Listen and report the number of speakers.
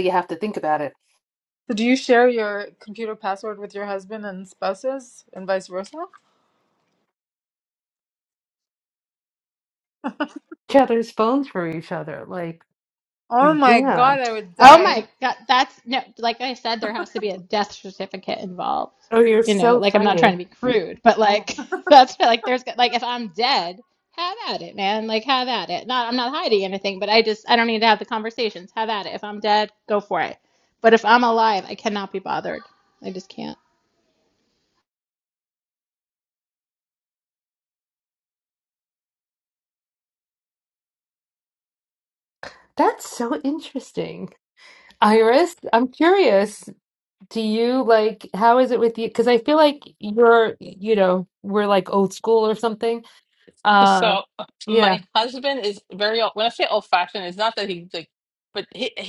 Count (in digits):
4